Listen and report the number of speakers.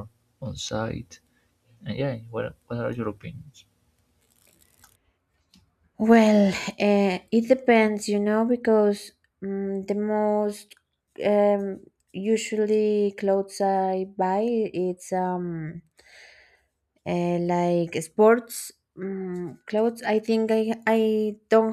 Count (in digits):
2